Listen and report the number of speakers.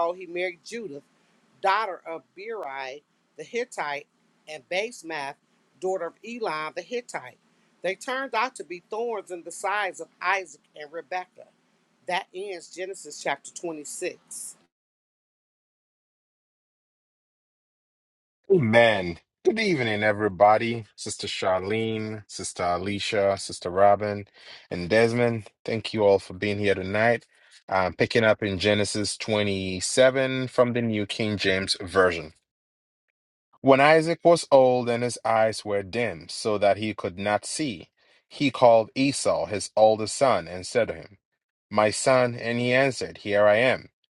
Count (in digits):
2